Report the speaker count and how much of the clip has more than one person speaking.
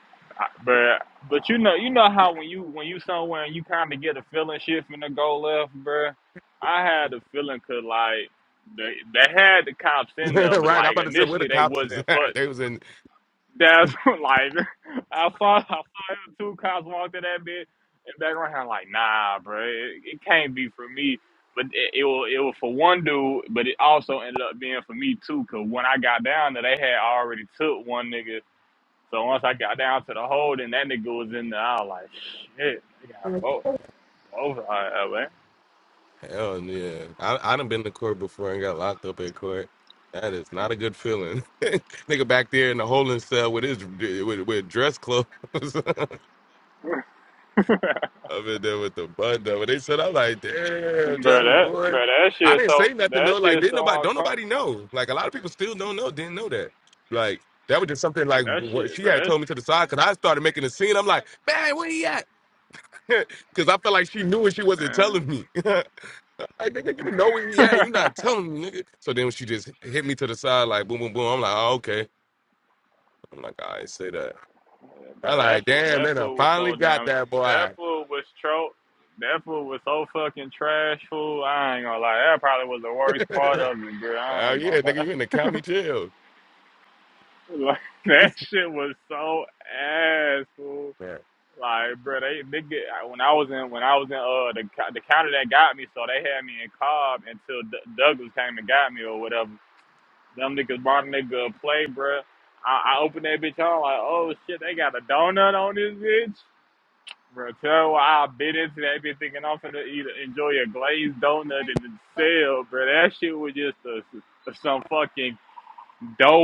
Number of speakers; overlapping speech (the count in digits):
2, about 8%